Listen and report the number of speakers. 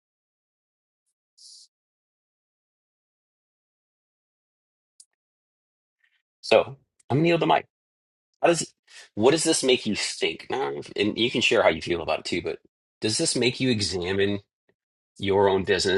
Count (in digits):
1